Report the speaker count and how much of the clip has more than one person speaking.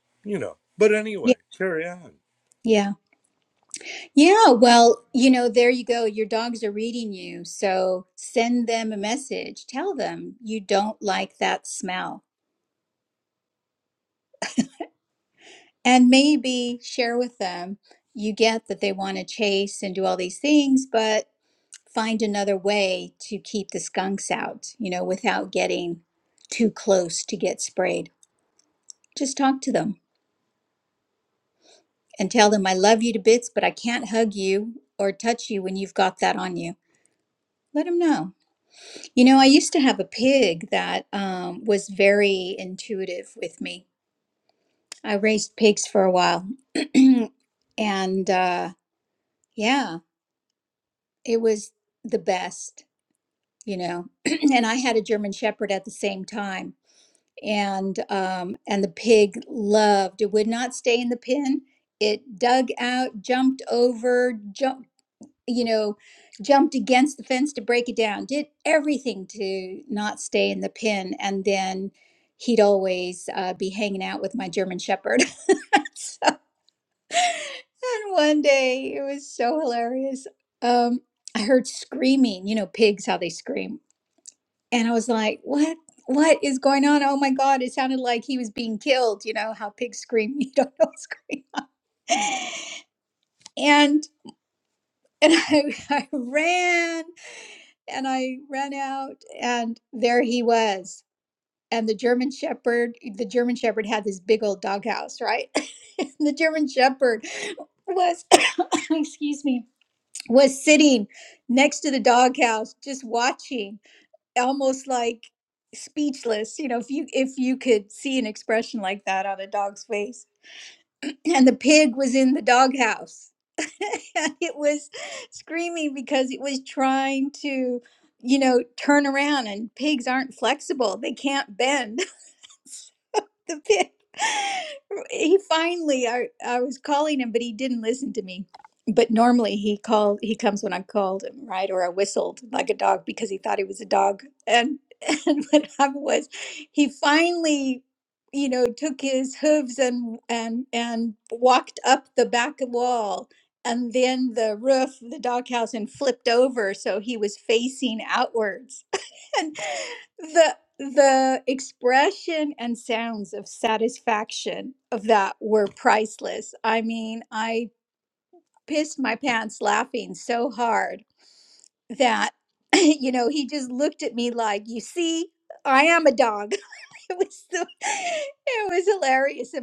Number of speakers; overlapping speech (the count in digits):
2, under 1%